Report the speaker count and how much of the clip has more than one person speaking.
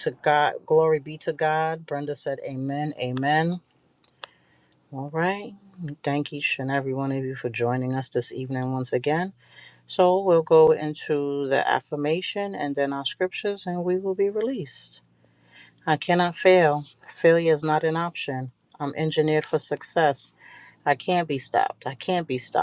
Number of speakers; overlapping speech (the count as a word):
one, no overlap